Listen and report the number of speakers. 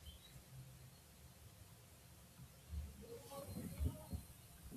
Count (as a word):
zero